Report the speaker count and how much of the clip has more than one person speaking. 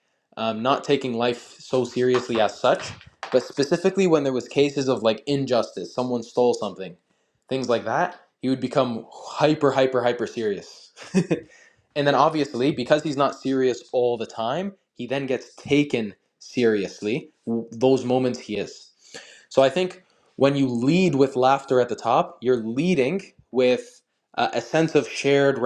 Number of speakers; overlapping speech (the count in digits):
1, no overlap